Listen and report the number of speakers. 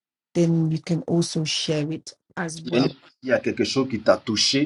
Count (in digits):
2